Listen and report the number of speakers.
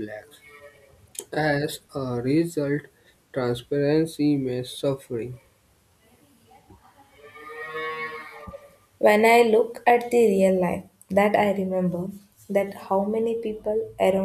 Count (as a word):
two